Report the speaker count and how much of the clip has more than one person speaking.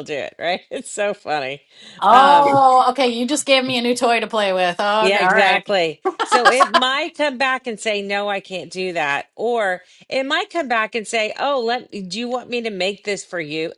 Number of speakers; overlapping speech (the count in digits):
2, about 8%